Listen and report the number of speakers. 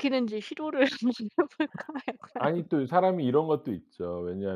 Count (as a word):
two